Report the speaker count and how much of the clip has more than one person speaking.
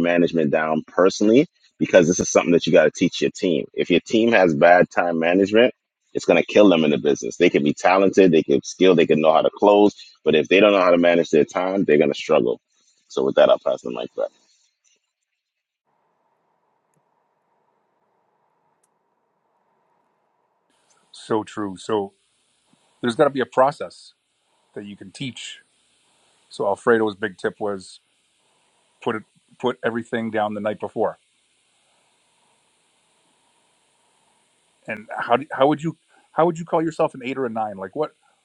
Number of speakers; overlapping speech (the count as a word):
two, no overlap